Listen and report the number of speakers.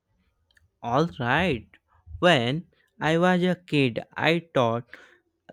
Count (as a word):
one